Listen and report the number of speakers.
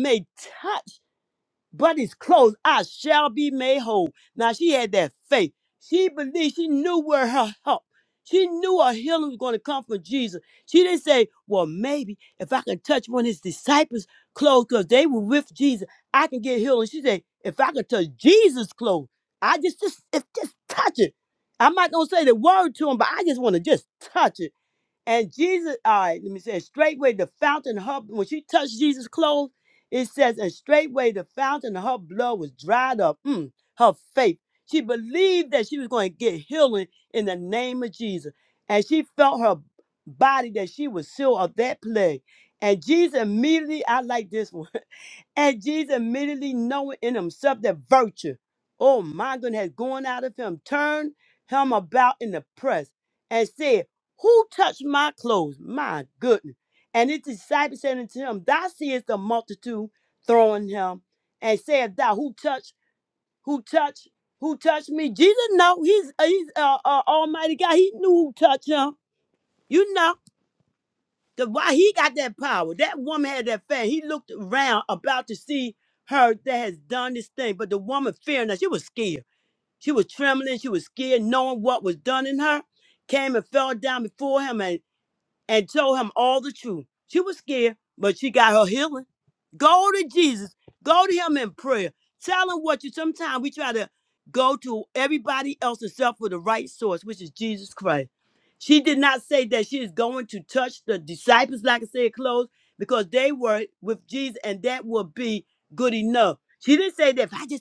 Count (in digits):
1